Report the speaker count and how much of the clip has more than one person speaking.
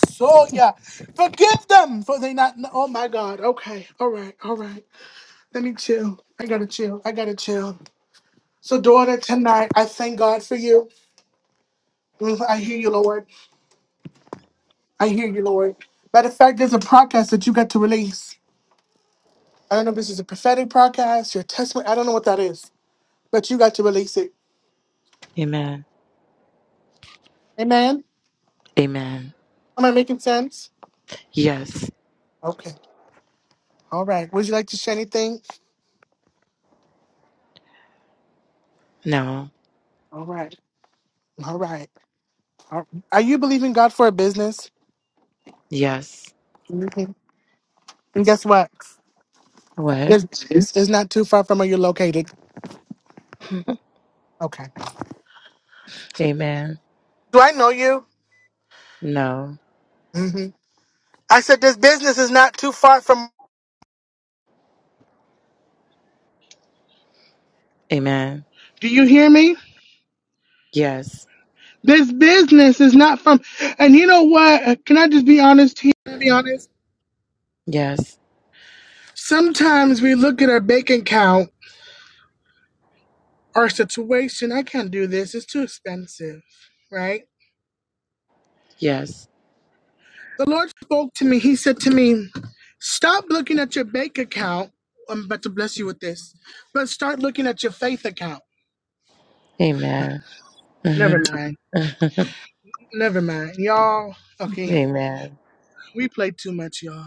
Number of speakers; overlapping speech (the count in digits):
2, about 1%